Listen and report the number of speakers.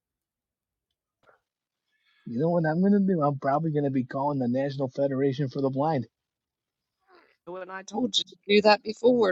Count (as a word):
two